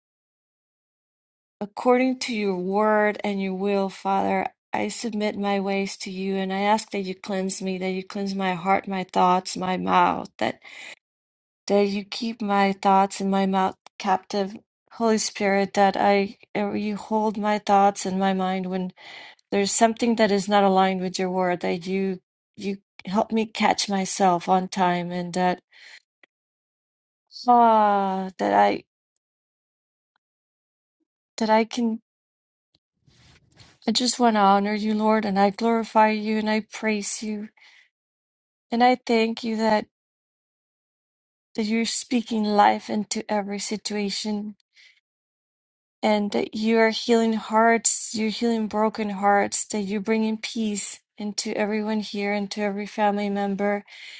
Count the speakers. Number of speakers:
1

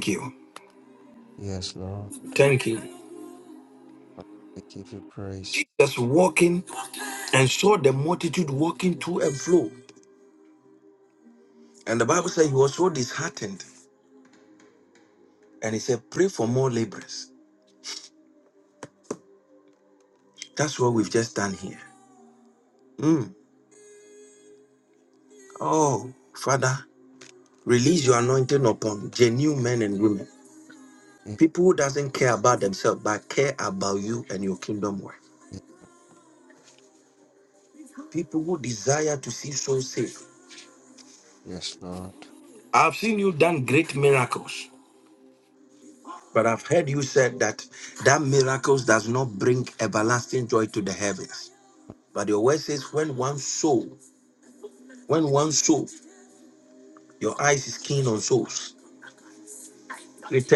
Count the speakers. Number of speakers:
2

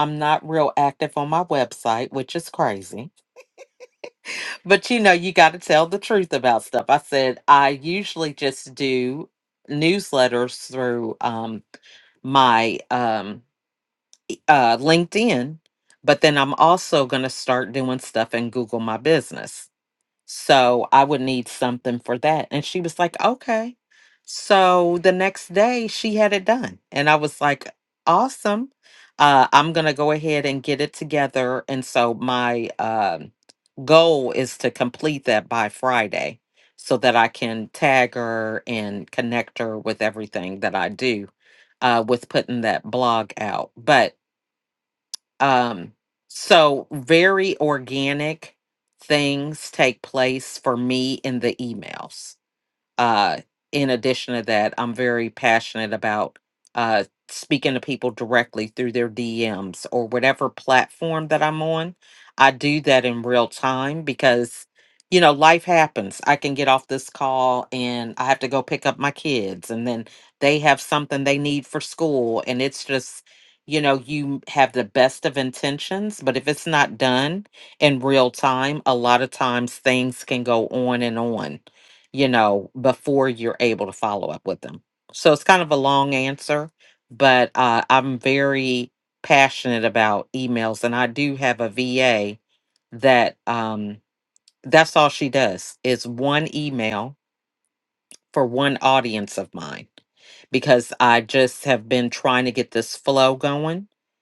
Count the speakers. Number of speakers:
1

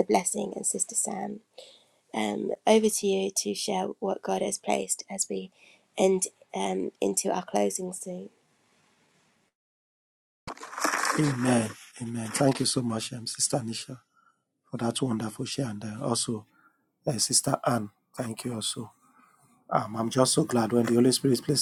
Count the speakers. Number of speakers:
2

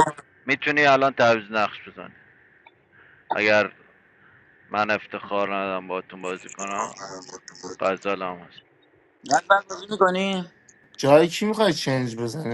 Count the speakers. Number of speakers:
3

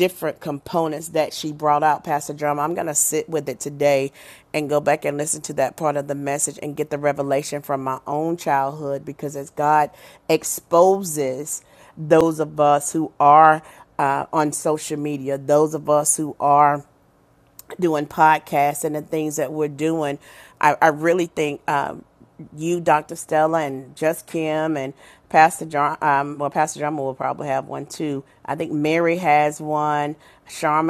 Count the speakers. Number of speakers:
1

